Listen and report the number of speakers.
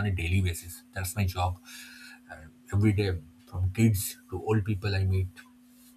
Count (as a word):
one